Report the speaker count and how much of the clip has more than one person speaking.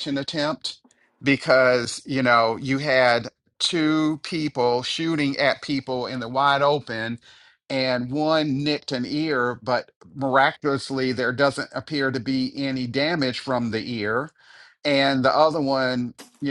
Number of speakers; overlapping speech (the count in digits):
1, no overlap